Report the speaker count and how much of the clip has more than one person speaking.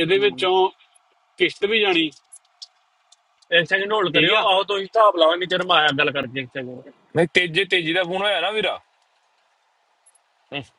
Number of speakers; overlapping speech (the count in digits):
3, about 7%